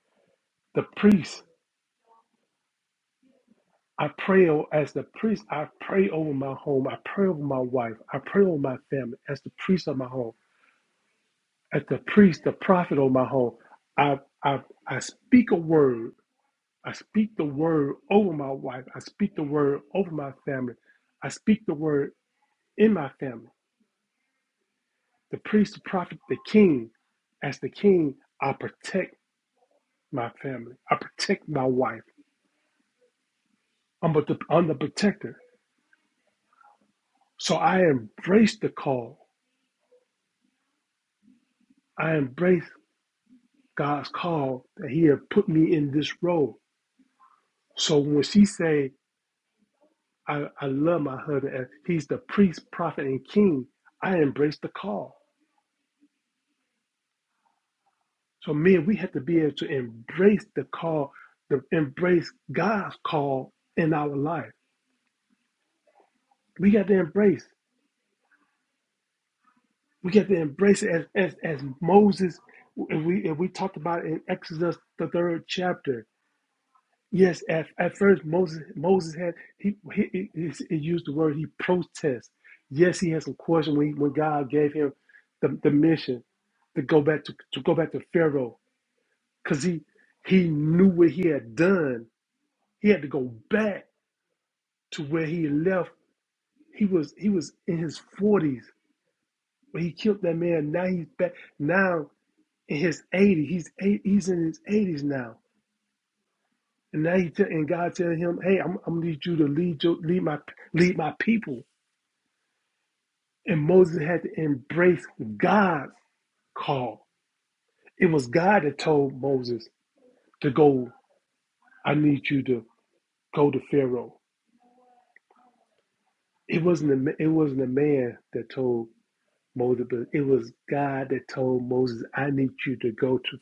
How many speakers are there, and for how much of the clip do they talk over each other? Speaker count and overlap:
one, no overlap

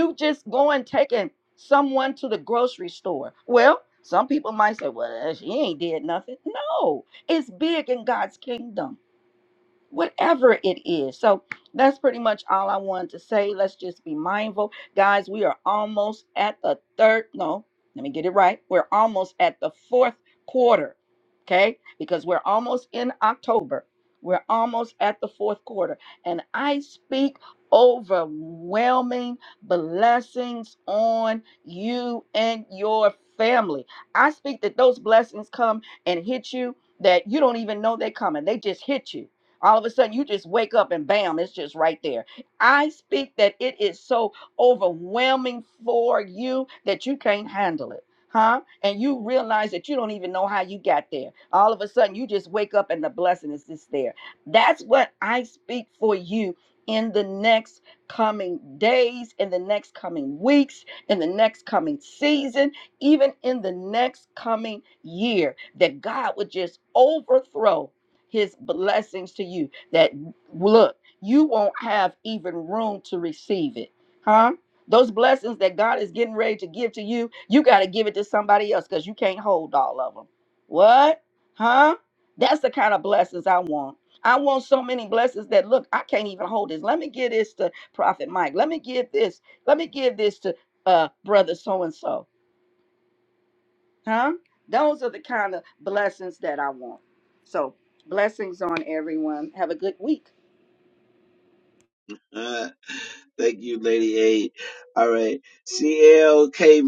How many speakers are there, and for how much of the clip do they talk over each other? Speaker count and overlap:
two, no overlap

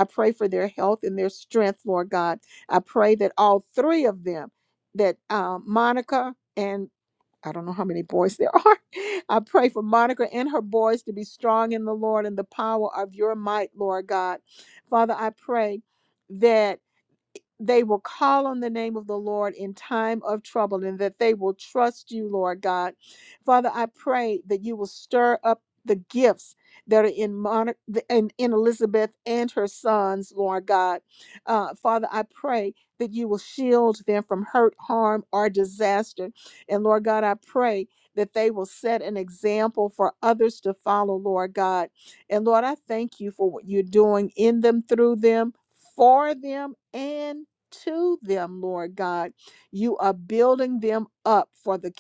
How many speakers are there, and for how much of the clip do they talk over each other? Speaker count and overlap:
one, no overlap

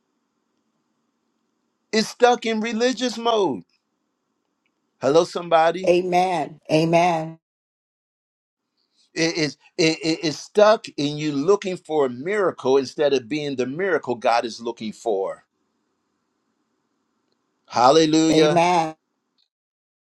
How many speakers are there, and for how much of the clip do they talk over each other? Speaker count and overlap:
two, about 2%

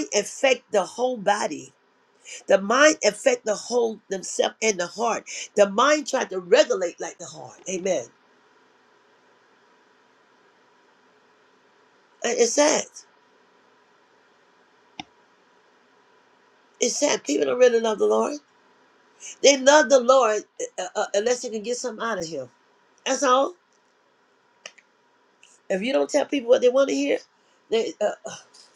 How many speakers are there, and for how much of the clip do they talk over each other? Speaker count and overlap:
one, no overlap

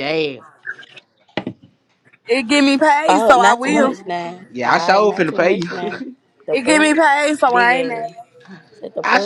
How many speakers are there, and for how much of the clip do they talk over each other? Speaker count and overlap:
three, about 38%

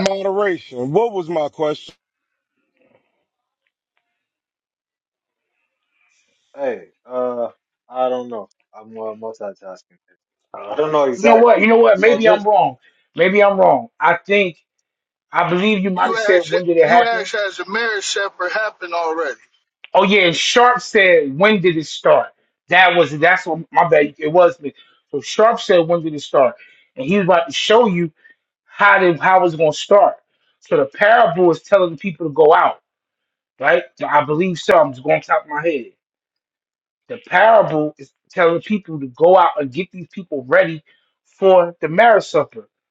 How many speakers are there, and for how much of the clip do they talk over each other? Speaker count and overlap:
four, about 6%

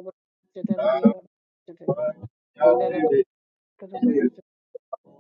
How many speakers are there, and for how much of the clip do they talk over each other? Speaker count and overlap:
two, about 23%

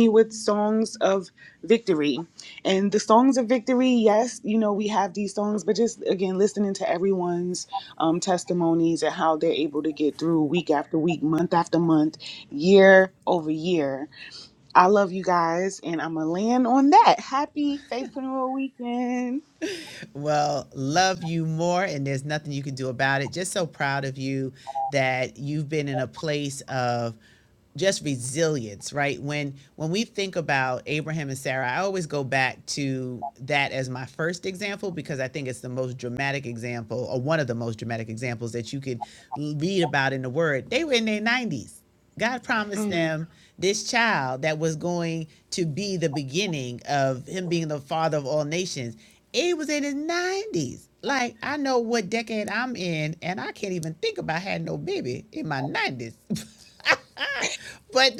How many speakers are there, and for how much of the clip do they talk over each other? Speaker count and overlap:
two, about 1%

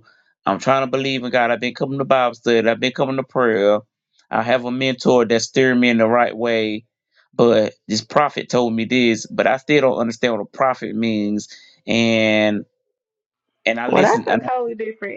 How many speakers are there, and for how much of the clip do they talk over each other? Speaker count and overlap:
two, about 4%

